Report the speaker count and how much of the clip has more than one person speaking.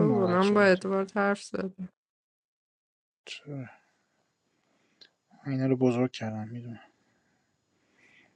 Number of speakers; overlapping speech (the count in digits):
2, about 7%